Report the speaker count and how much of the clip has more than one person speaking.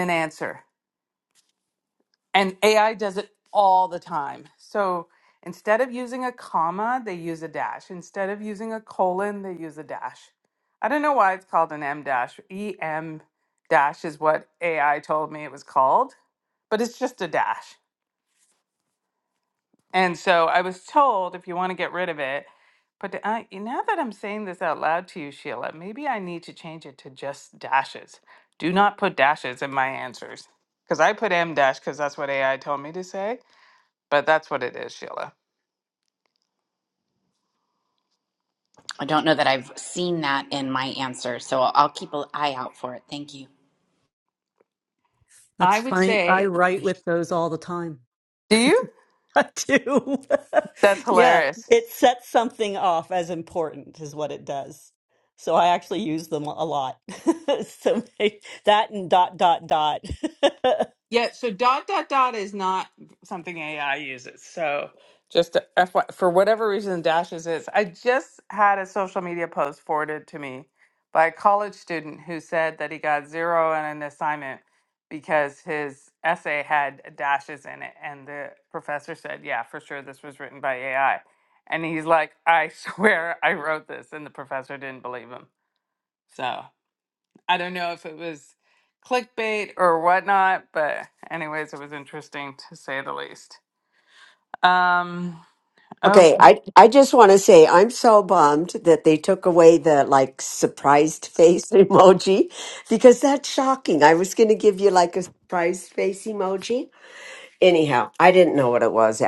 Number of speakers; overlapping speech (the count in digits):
4, about 1%